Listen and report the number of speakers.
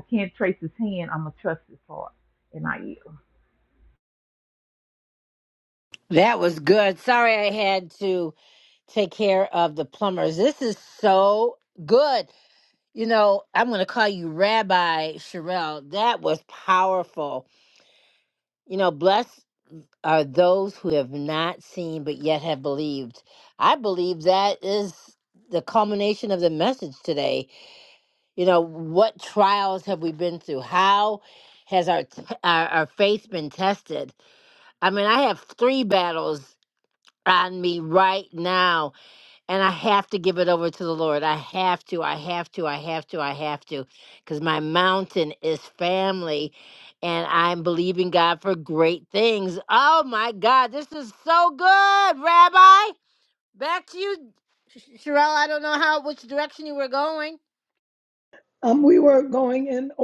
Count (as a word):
three